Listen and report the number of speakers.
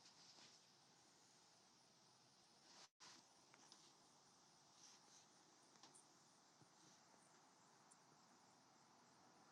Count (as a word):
zero